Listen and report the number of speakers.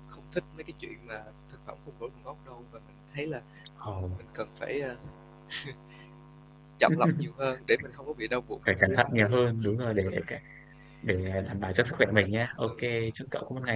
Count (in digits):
2